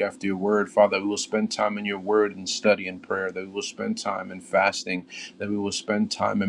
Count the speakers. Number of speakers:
one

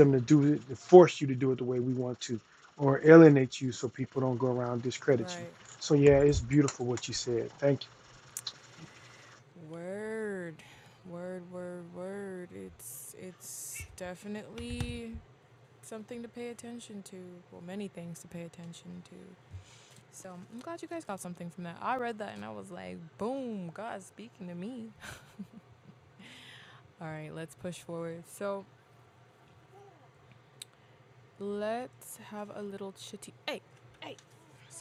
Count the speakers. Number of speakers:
two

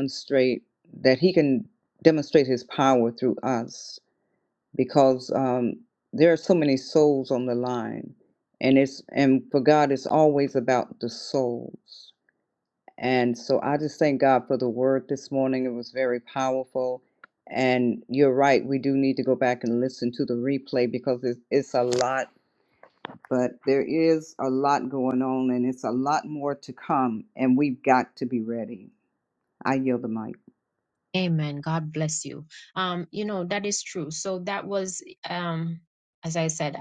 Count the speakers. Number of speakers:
two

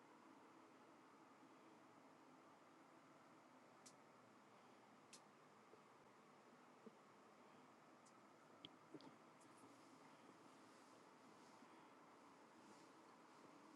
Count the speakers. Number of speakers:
zero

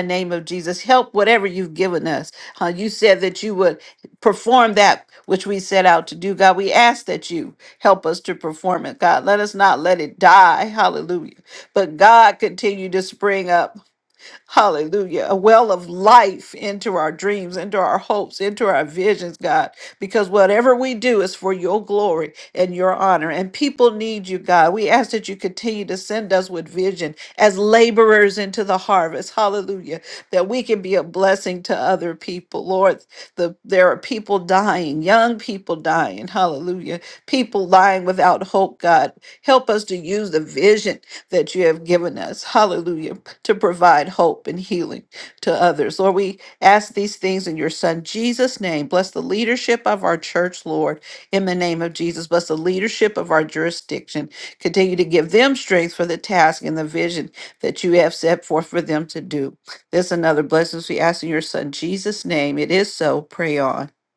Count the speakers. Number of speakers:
one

